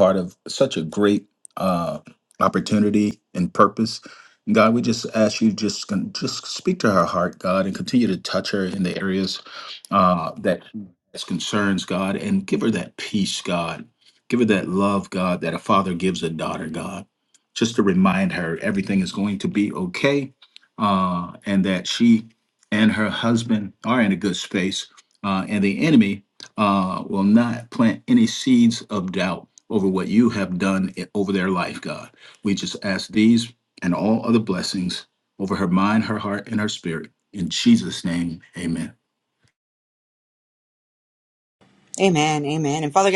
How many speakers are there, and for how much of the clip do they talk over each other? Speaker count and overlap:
2, no overlap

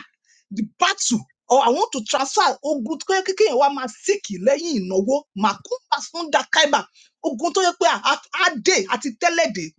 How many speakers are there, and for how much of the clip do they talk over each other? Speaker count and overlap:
1, no overlap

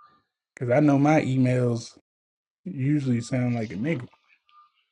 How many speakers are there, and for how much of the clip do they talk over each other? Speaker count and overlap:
1, no overlap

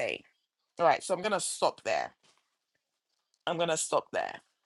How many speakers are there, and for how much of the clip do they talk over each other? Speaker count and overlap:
1, no overlap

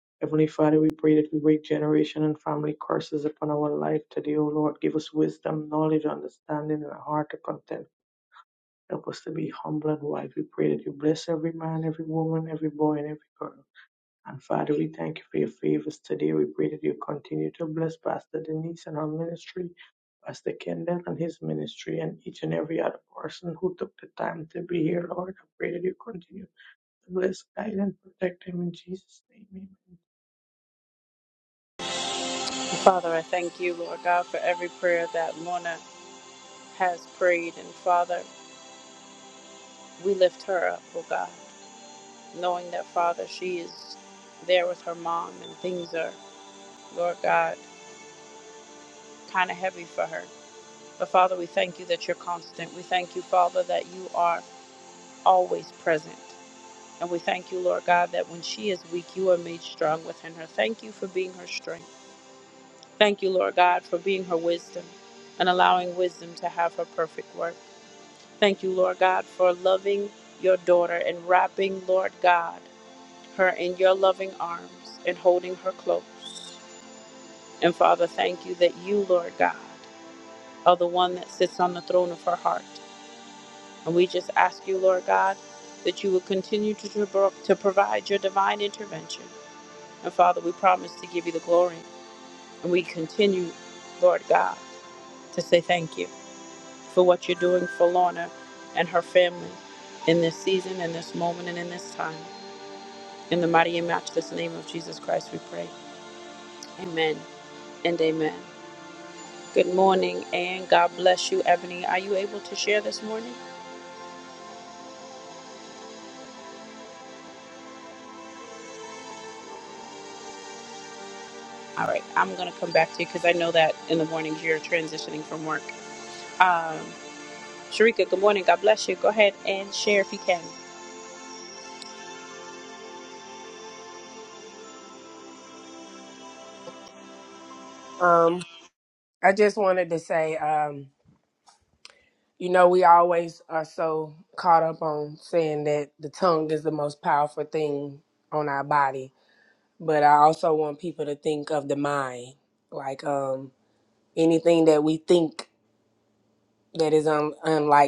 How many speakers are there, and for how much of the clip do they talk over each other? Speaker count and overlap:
3, no overlap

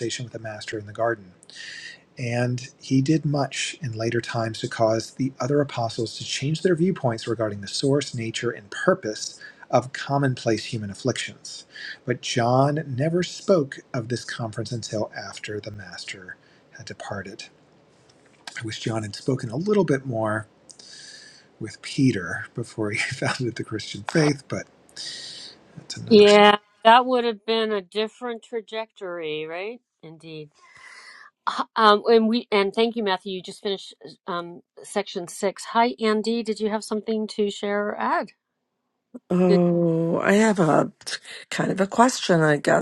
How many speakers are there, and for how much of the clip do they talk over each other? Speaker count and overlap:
3, under 1%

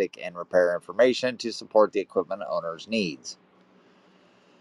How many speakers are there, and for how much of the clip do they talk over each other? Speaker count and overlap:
1, no overlap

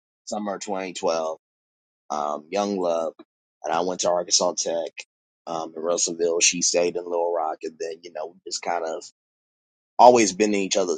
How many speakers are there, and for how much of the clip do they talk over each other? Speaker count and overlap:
1, no overlap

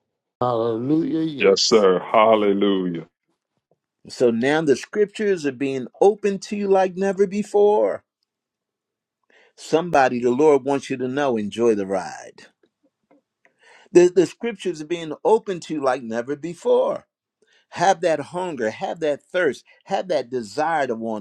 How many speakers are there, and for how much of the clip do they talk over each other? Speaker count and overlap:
3, about 1%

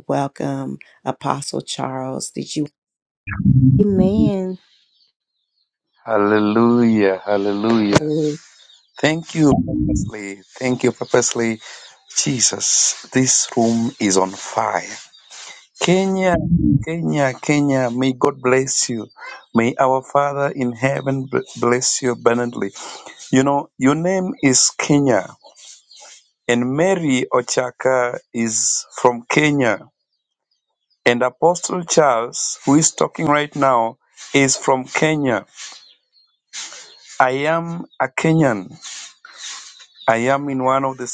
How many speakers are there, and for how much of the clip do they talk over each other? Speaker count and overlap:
2, no overlap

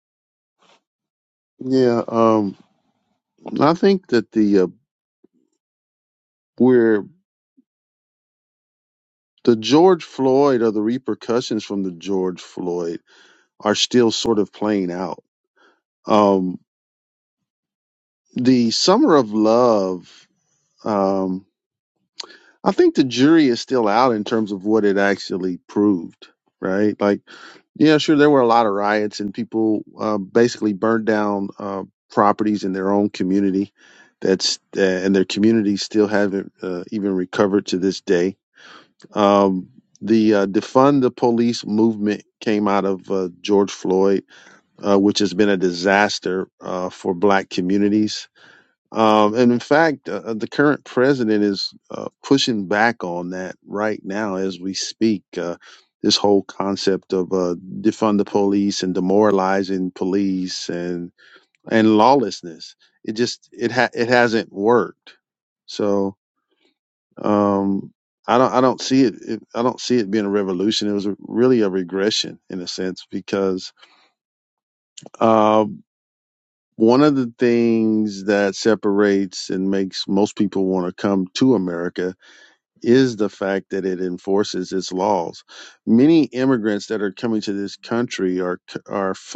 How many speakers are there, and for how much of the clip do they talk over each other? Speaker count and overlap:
1, no overlap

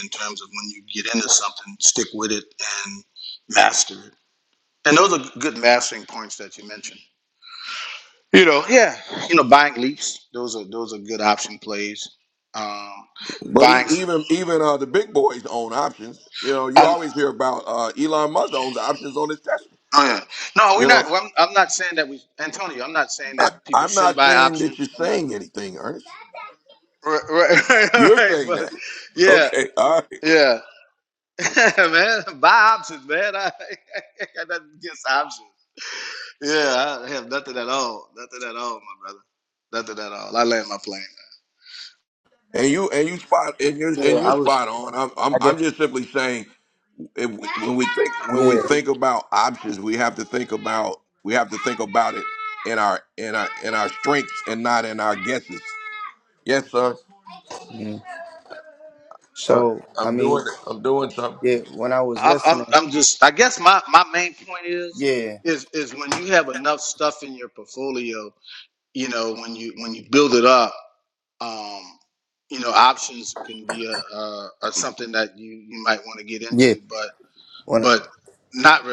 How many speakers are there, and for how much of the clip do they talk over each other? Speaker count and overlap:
3, about 8%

